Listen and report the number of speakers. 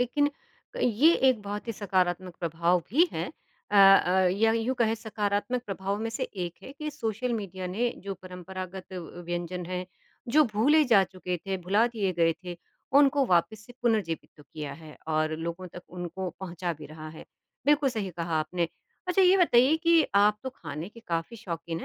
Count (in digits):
1